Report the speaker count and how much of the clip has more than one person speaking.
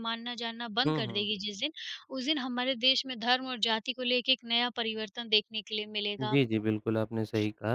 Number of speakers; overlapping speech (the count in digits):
2, about 11%